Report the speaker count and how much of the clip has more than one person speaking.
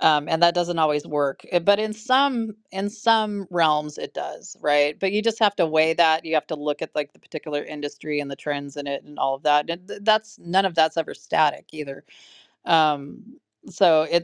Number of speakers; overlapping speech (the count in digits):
1, no overlap